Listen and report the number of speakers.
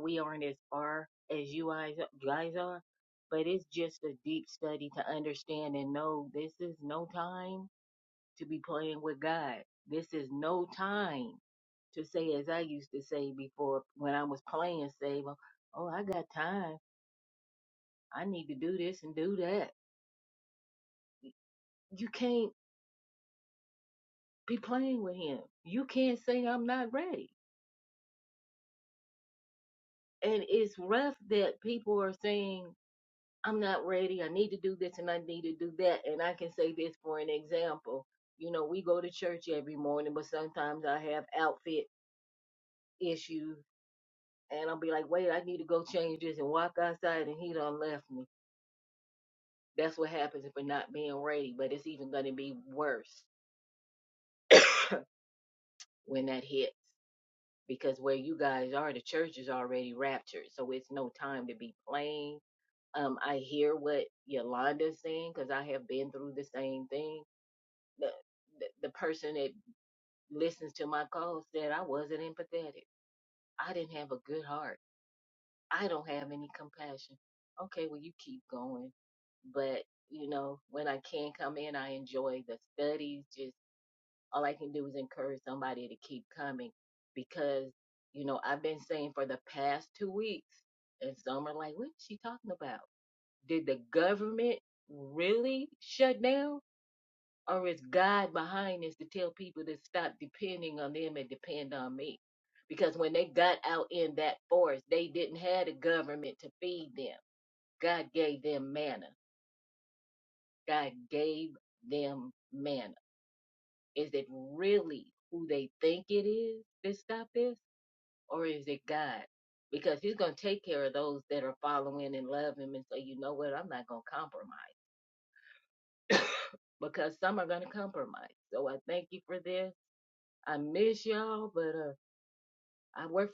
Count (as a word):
one